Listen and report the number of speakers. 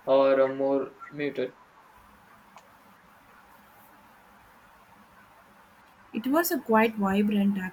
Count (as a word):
two